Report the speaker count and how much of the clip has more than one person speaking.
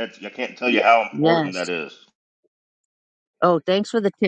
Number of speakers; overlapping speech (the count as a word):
two, about 9%